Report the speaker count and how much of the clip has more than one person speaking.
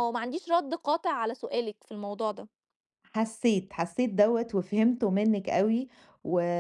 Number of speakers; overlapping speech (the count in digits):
2, no overlap